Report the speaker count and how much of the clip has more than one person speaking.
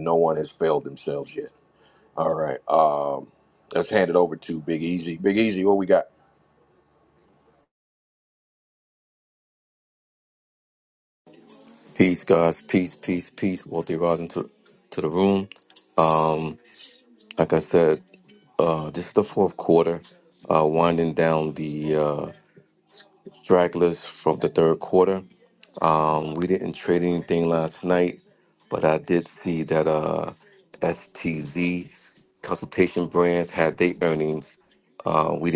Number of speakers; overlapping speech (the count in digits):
2, no overlap